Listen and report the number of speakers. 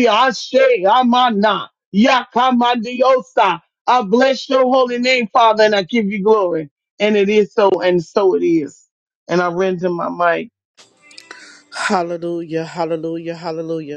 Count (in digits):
2